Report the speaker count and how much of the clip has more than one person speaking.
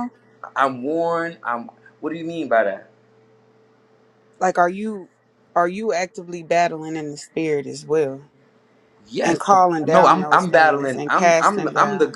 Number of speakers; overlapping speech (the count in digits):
2, about 24%